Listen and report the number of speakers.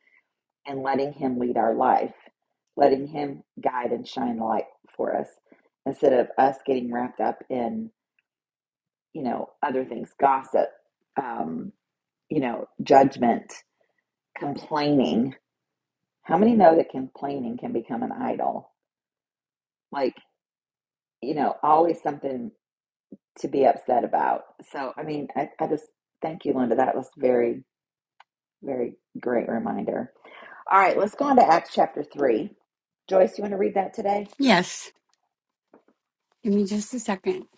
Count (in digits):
2